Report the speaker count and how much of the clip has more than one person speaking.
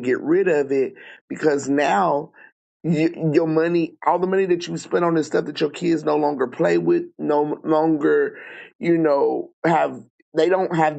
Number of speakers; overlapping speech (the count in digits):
1, no overlap